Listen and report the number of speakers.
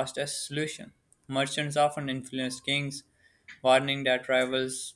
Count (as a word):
one